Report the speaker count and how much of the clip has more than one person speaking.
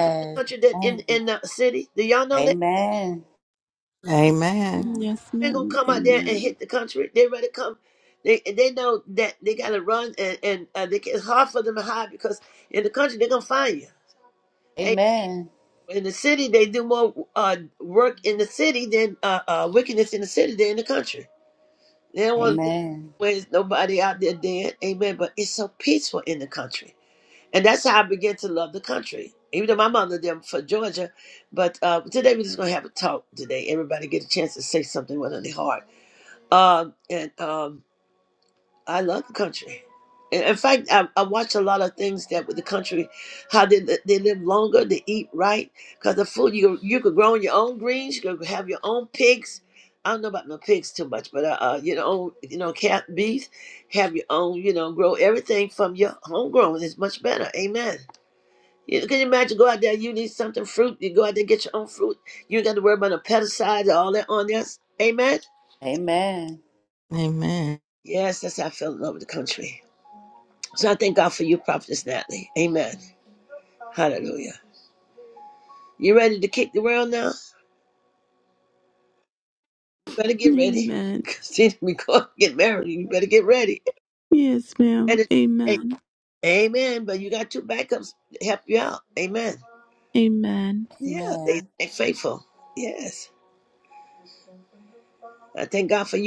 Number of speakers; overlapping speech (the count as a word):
four, about 4%